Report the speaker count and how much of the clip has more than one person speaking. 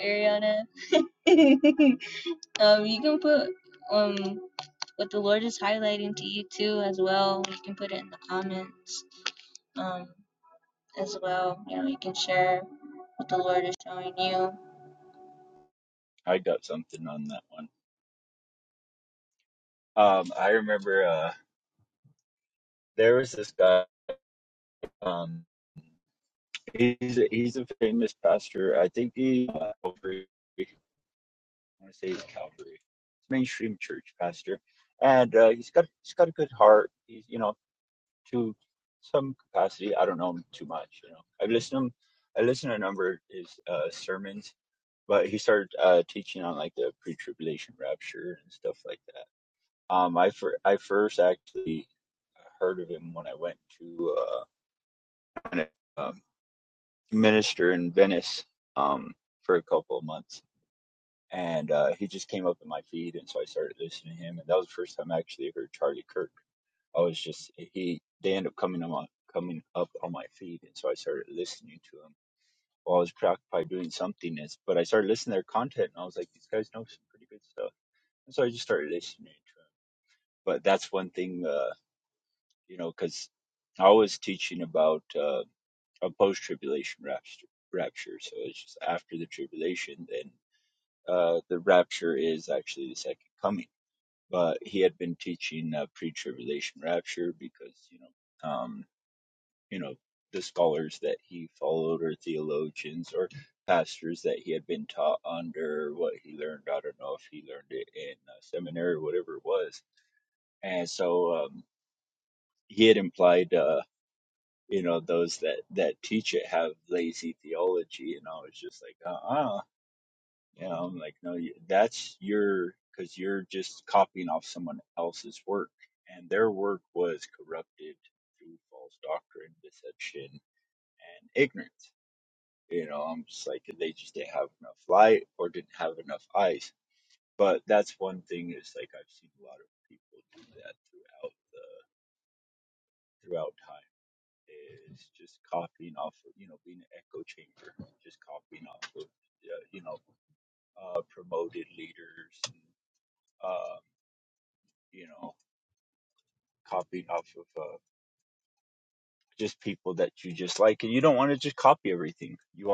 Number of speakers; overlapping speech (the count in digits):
2, no overlap